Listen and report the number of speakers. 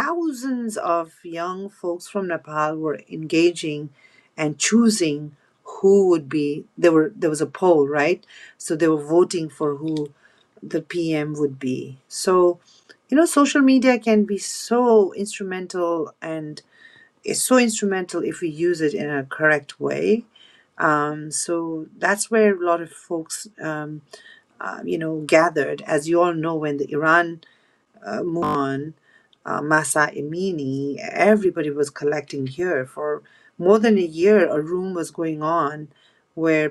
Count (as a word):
one